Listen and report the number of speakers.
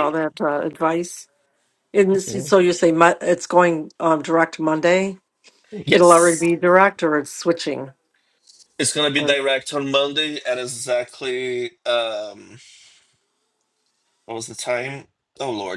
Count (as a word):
two